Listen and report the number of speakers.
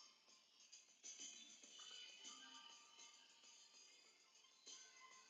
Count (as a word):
zero